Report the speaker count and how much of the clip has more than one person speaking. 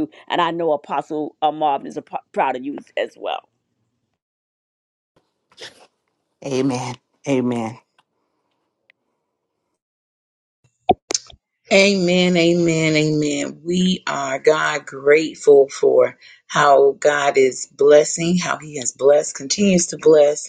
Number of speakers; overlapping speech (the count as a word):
three, no overlap